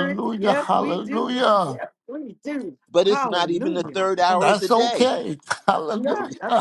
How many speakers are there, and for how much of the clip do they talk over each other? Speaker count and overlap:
3, about 53%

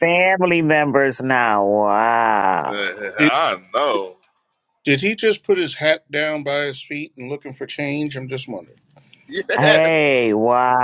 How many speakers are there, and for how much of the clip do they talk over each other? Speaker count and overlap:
3, about 4%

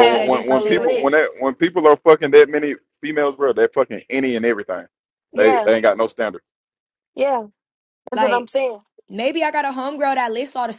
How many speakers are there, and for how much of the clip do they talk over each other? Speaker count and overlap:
3, about 16%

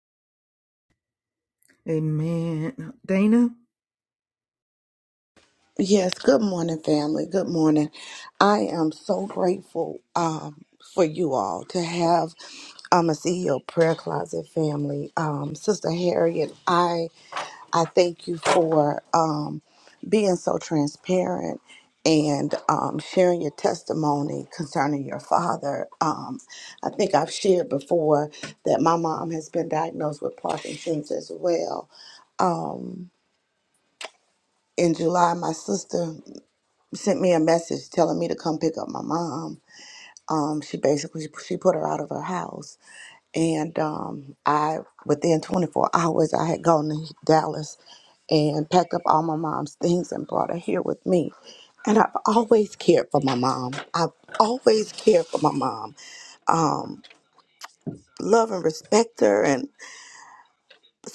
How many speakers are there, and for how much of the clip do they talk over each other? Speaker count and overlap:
2, no overlap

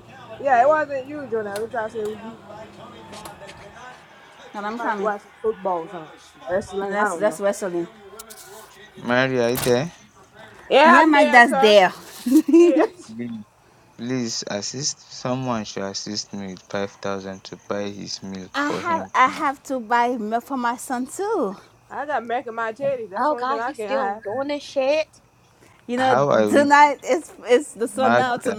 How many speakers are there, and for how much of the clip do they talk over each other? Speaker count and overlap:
4, about 17%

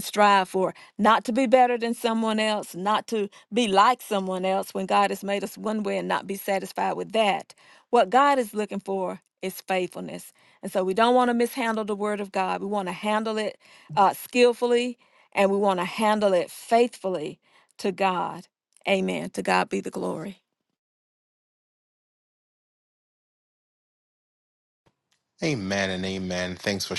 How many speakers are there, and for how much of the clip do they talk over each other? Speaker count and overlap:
2, no overlap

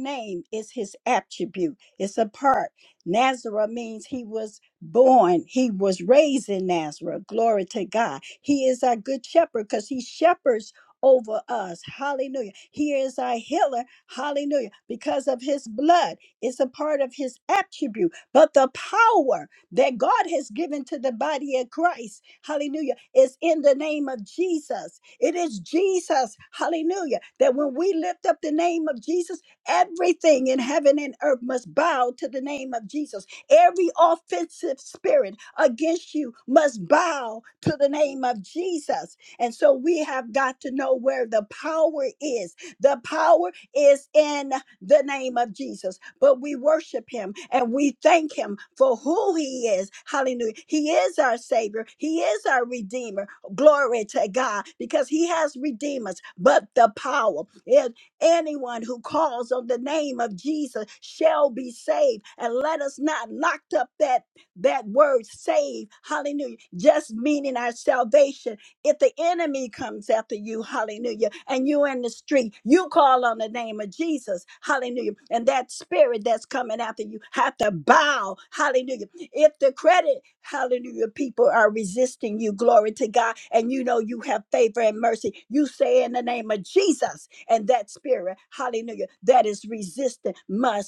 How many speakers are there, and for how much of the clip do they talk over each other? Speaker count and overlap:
1, no overlap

